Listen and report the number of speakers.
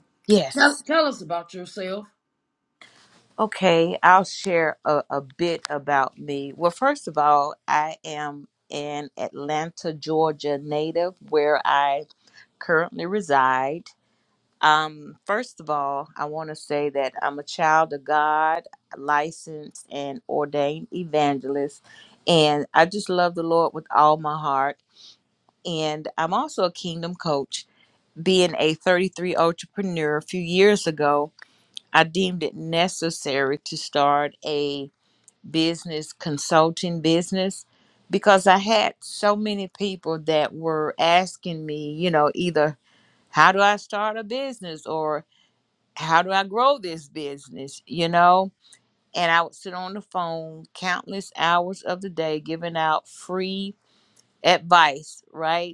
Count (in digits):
2